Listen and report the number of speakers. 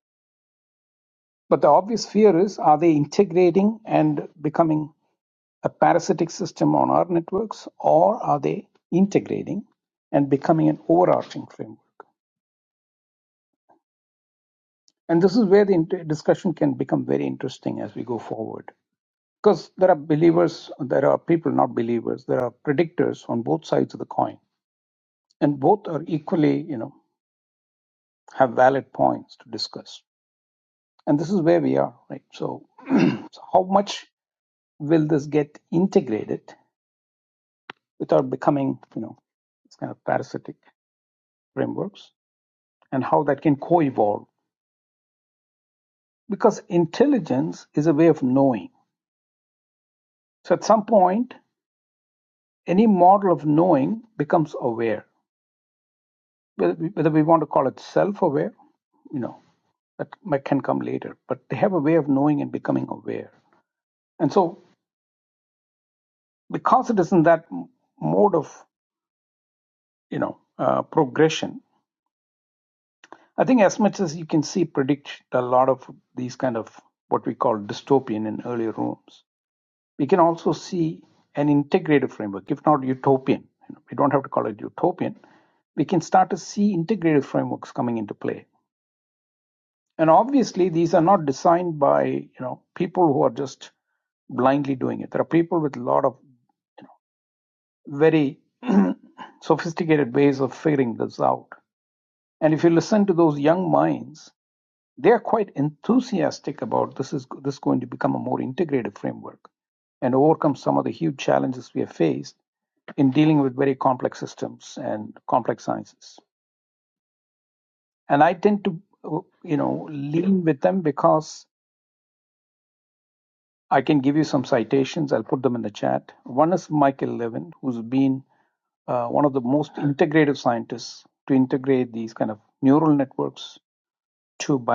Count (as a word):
one